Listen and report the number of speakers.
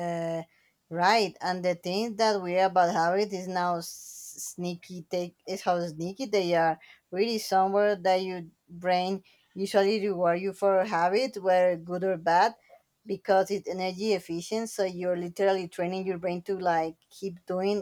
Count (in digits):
1